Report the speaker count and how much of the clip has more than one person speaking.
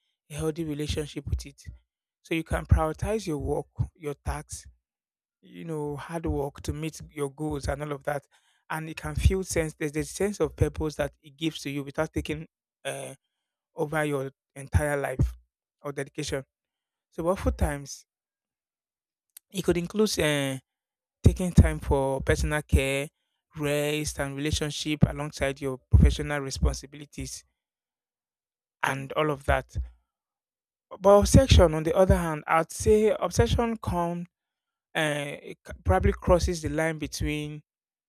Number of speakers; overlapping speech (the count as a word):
one, no overlap